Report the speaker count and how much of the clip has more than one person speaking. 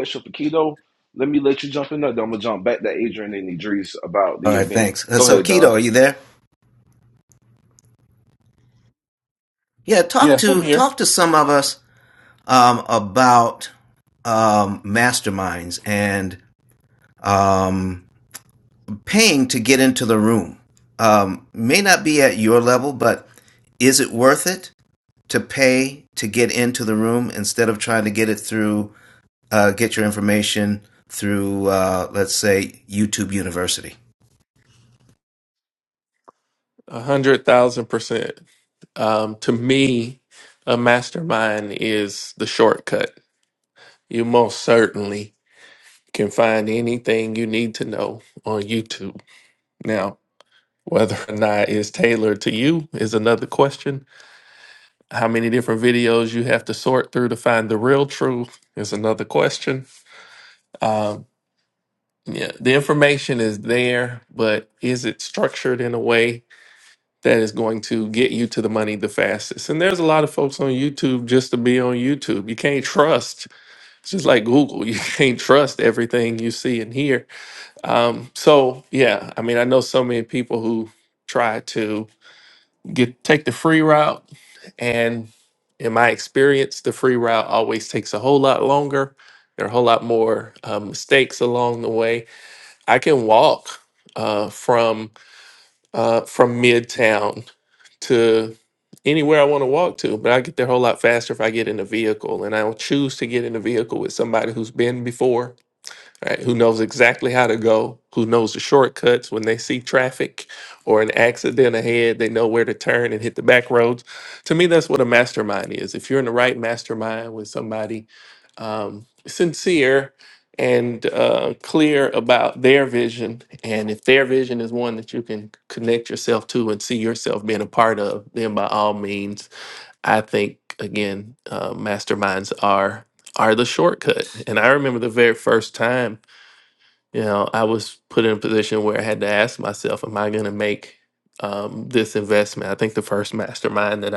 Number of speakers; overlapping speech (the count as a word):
three, about 1%